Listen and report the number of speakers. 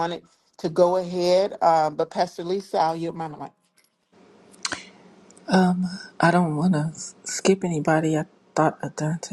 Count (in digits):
2